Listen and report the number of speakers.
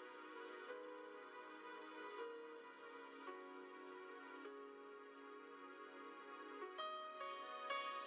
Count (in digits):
0